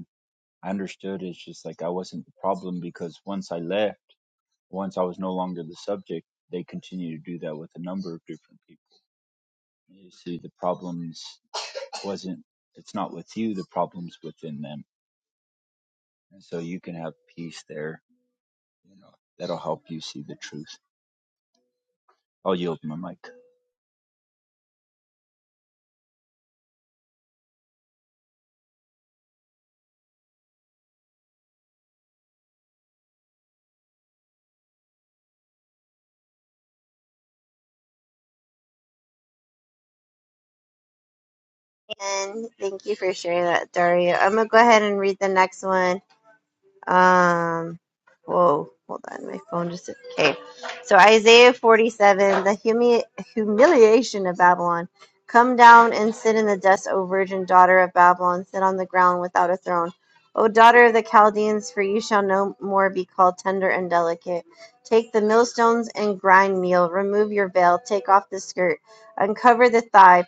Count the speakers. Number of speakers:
2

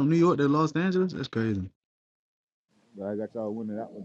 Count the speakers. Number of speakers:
2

